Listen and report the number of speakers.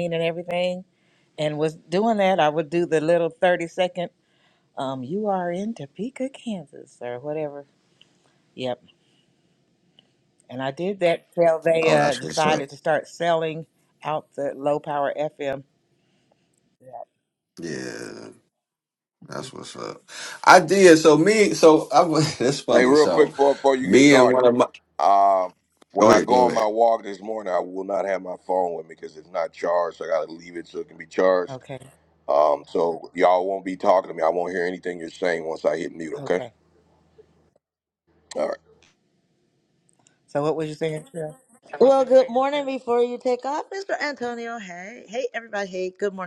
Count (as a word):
four